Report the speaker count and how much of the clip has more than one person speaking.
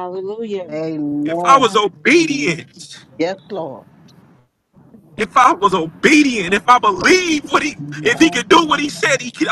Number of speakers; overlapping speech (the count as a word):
three, about 10%